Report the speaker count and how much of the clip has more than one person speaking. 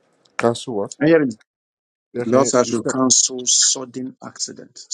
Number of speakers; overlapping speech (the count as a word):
two, about 16%